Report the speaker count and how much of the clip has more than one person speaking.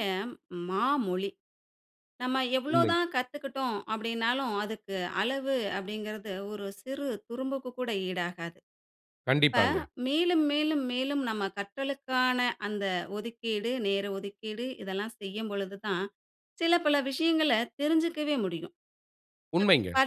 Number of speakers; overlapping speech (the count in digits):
2, about 2%